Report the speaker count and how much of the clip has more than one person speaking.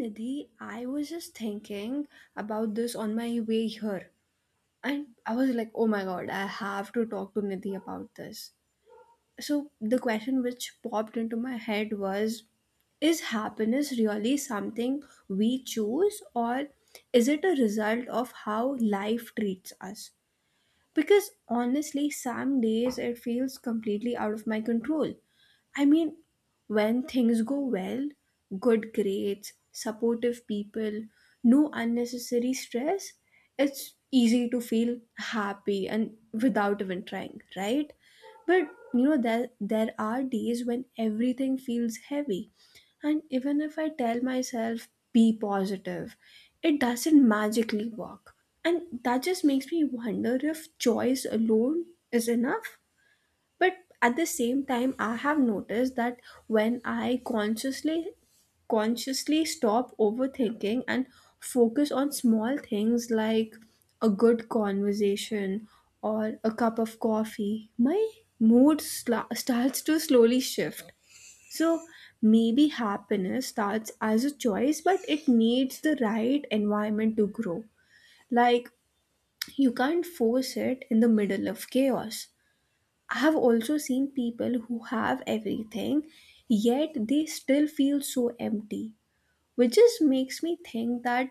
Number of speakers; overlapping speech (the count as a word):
one, no overlap